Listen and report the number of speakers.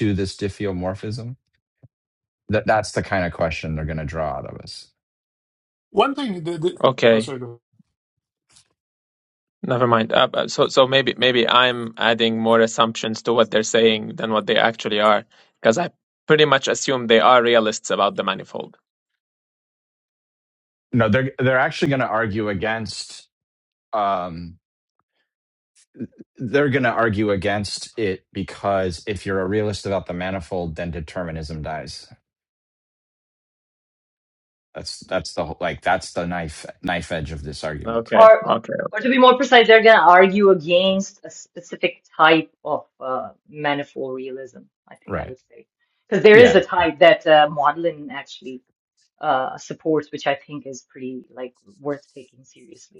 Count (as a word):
four